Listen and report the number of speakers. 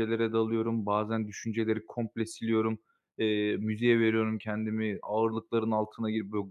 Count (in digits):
1